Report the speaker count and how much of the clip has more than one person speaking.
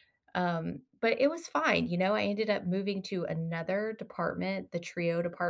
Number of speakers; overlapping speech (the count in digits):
1, no overlap